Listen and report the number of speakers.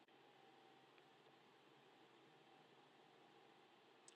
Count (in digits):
0